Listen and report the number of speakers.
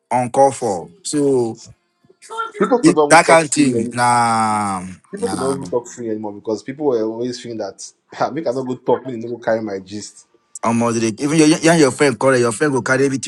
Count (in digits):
2